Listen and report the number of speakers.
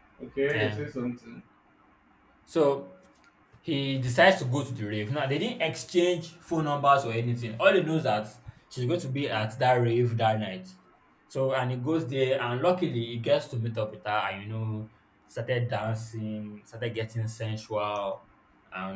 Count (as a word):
two